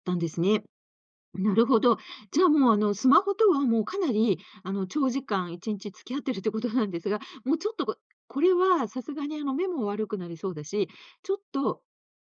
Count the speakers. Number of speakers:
one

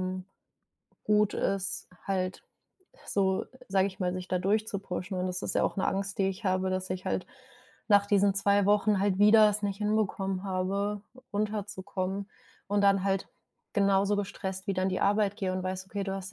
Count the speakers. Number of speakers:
one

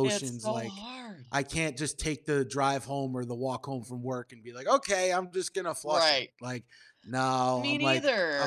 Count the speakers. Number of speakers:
two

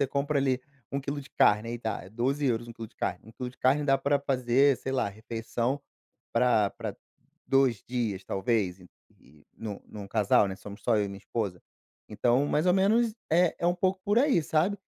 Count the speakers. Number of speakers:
one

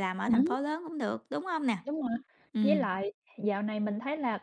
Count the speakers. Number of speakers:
two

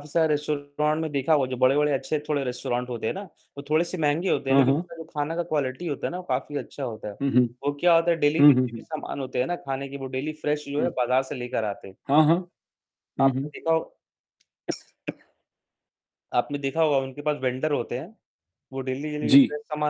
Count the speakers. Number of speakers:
two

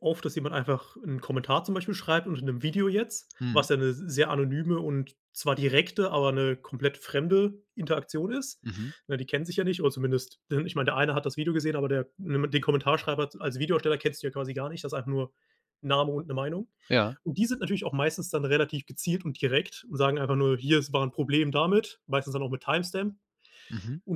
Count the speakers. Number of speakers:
two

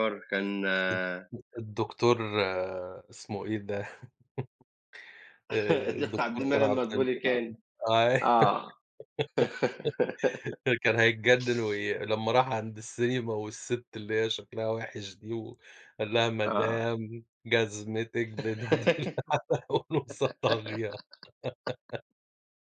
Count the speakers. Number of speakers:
two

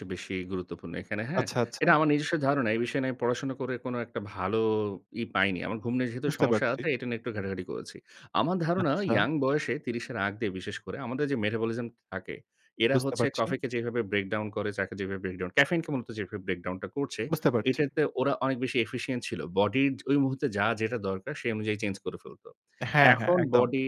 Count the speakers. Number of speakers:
two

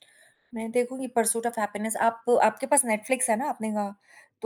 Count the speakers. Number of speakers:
one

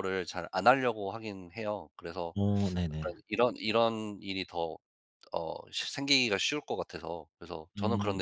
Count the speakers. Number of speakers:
two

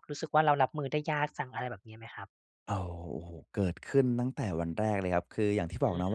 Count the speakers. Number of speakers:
two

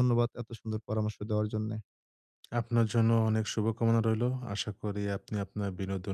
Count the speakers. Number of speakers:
two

